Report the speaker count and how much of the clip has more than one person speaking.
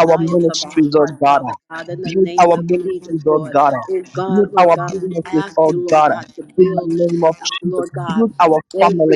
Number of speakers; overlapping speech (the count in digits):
2, about 70%